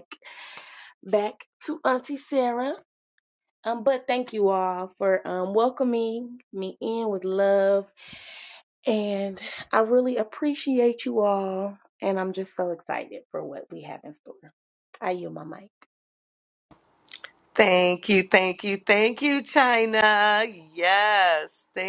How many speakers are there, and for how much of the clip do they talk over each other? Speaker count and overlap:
2, no overlap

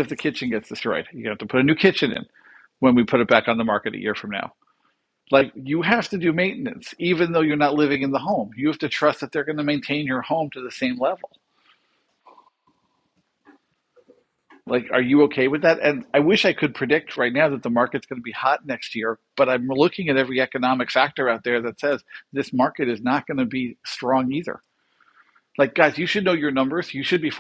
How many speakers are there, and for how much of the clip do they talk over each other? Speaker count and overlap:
1, no overlap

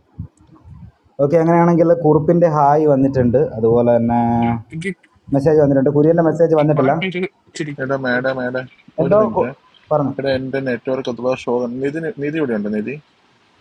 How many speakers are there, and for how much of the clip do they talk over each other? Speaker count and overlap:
3, about 11%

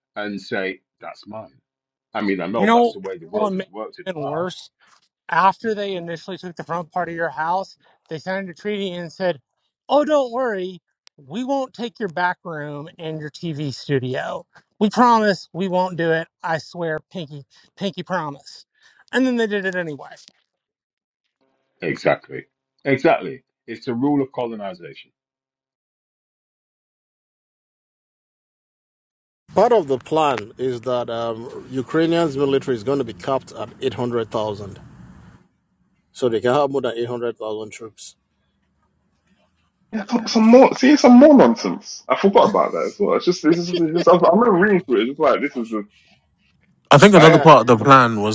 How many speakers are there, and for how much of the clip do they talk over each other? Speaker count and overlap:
5, about 3%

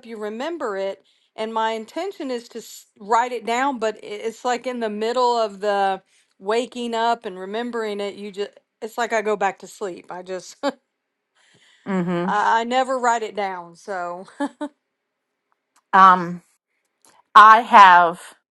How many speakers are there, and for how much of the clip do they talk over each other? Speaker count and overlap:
2, under 1%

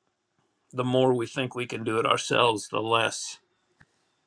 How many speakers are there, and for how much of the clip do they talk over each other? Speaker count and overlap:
1, no overlap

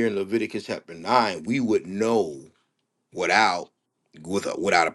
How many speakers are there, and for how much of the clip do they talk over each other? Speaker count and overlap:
1, no overlap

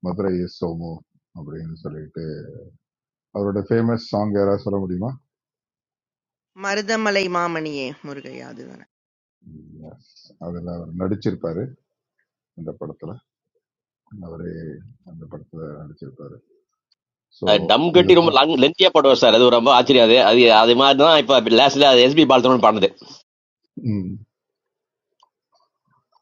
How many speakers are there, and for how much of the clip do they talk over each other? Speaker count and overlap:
3, about 2%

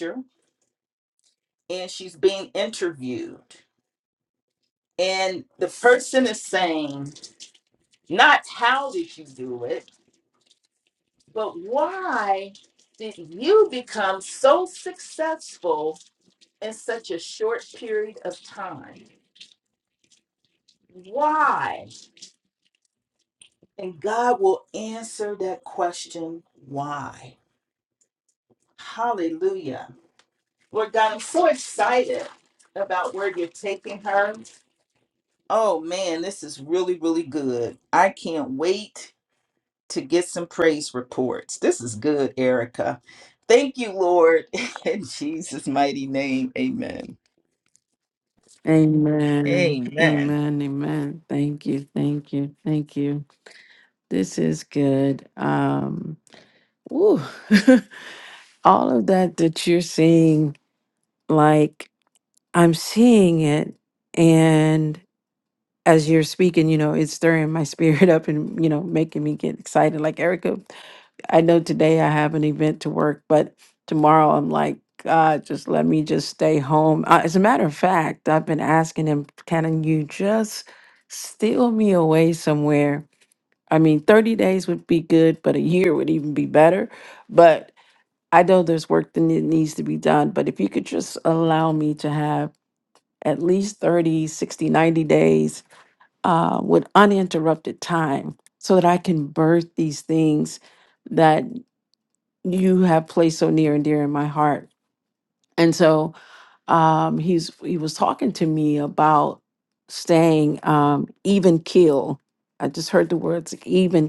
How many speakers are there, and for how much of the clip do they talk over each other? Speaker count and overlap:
2, about 1%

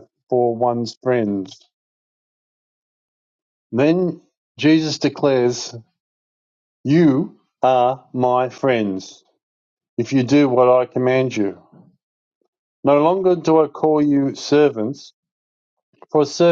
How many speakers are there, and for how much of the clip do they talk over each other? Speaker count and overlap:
1, no overlap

